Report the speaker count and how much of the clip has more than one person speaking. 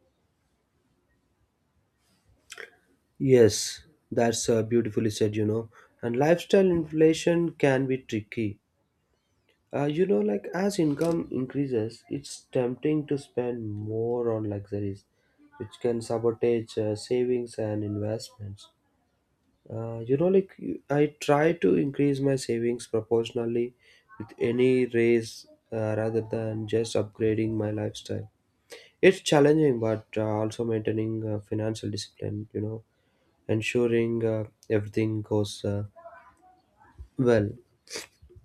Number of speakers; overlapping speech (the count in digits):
1, no overlap